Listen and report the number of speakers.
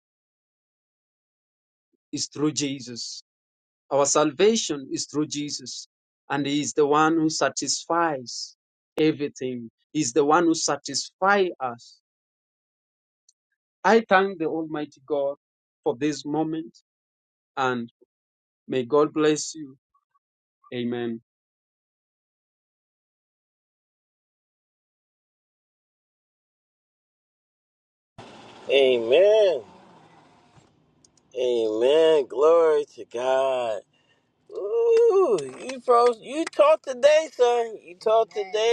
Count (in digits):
2